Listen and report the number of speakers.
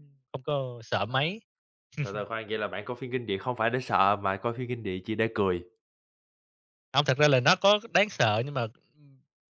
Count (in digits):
2